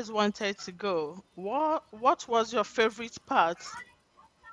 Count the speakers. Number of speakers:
1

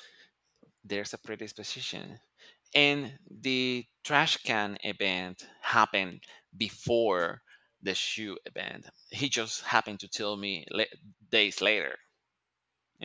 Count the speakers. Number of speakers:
1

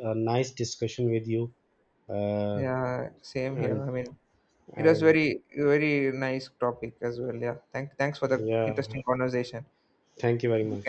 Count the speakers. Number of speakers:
2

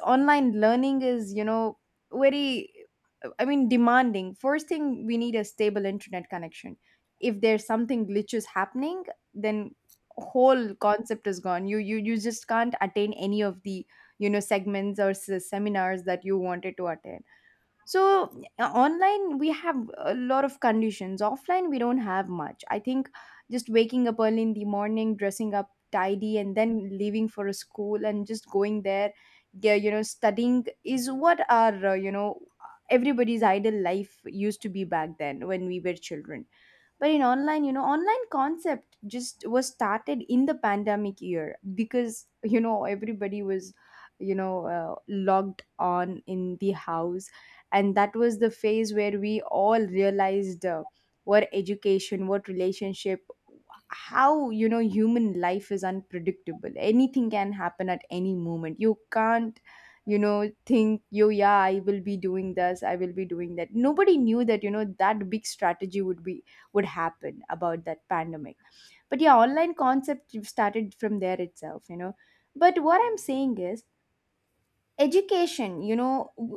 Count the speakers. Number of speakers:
1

